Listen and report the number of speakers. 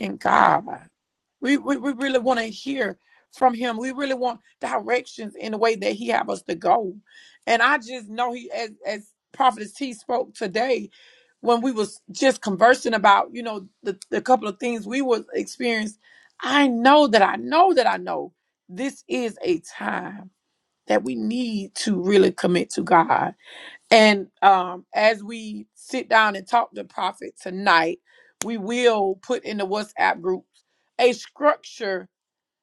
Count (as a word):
one